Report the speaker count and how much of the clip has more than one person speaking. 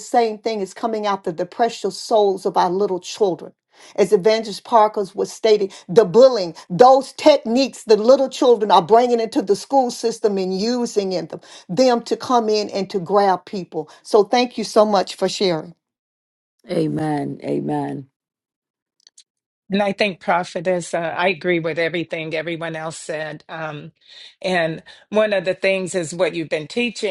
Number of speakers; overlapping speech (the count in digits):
3, no overlap